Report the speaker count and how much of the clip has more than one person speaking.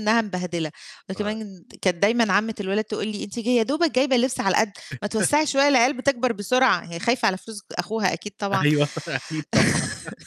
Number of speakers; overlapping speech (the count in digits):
2, about 4%